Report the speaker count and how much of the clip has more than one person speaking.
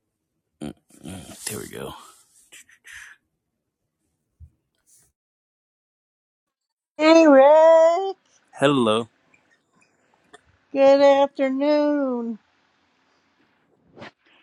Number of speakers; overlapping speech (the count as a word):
two, no overlap